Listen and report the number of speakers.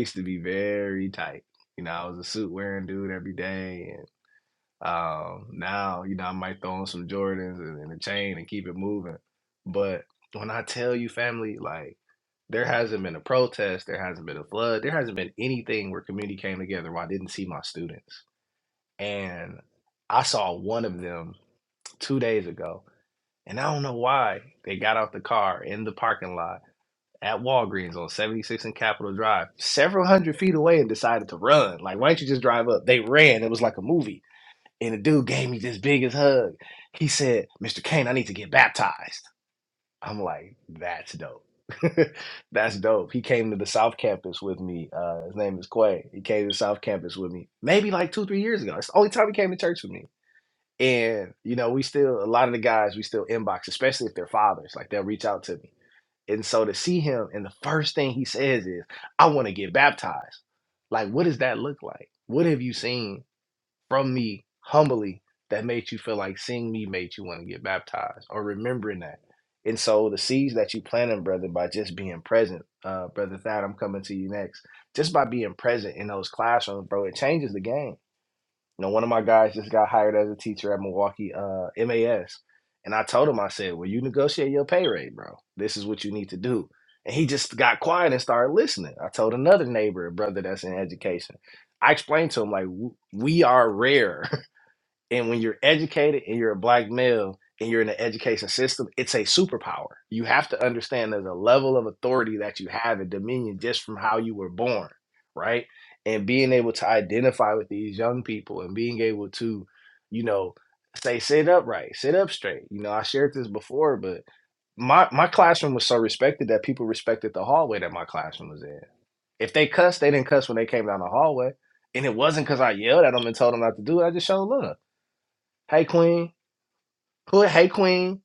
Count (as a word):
one